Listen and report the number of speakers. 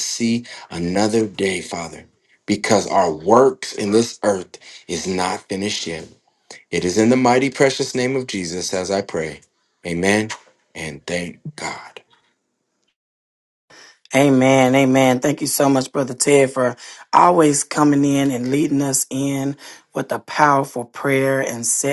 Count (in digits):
2